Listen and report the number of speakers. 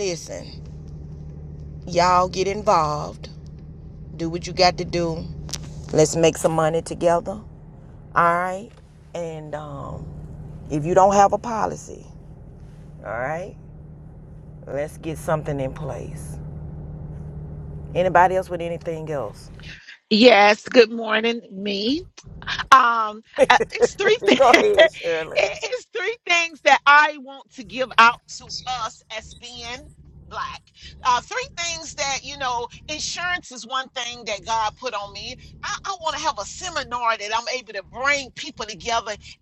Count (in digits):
2